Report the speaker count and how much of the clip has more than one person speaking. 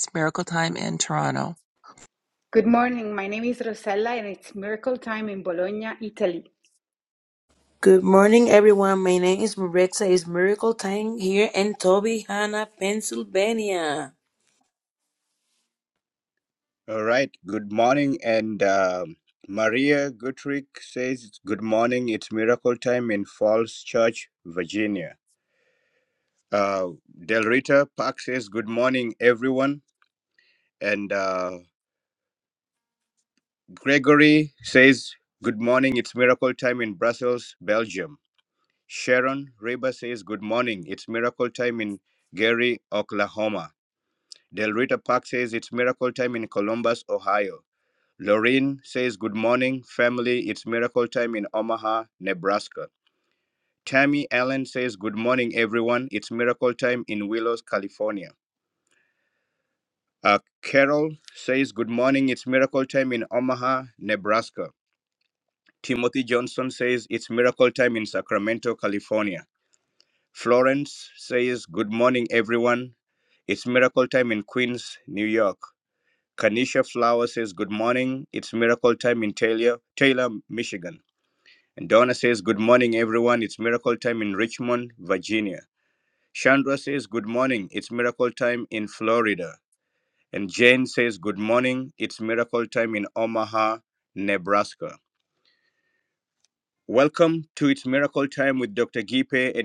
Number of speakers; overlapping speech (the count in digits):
4, no overlap